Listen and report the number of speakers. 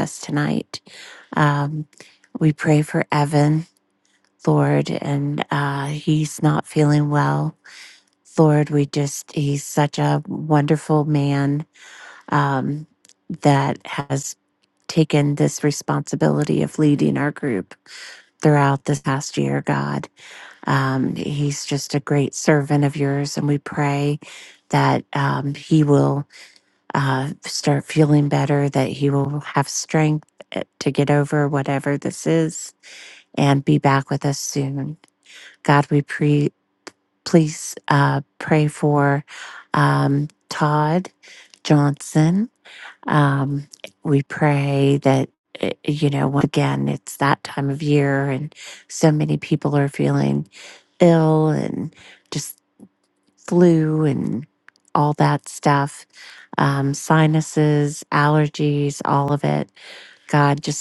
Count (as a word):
one